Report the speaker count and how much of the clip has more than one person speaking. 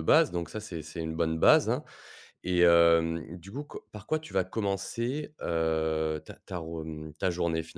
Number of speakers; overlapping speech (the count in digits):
1, no overlap